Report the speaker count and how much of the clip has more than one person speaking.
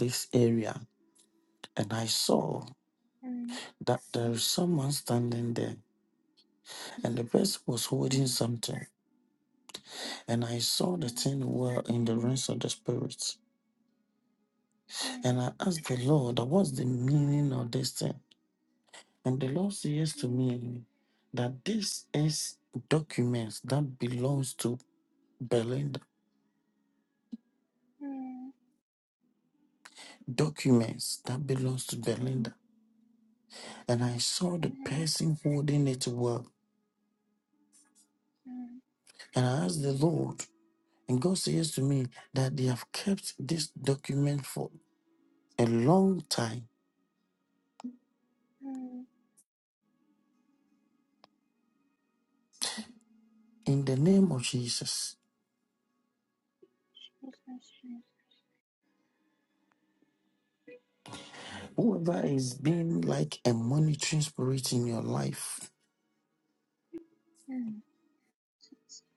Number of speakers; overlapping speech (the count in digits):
2, about 2%